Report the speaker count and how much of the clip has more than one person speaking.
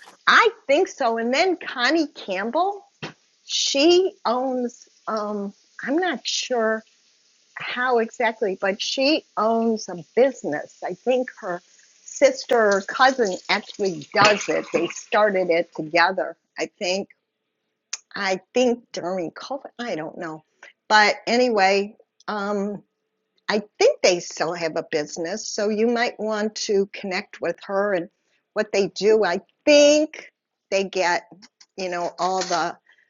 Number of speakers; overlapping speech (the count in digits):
1, no overlap